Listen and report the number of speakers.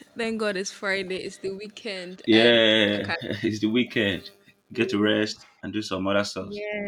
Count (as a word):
two